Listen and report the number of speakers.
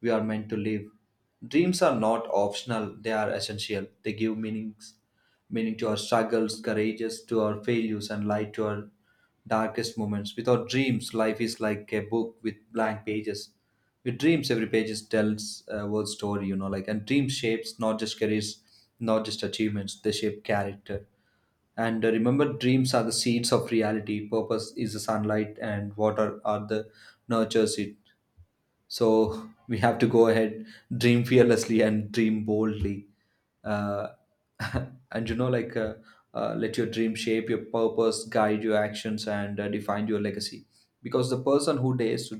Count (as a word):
one